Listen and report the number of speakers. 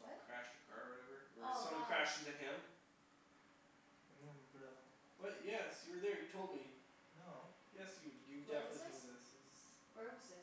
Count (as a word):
three